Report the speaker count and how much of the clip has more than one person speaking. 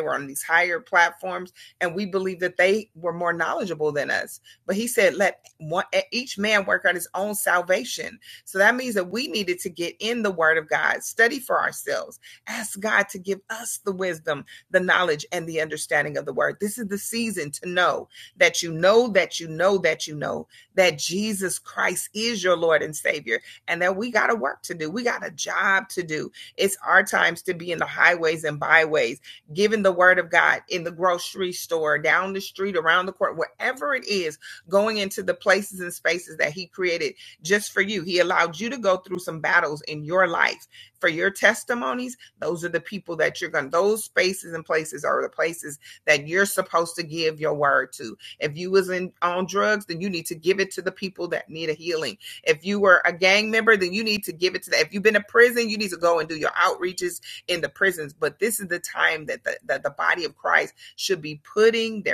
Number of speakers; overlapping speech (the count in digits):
1, no overlap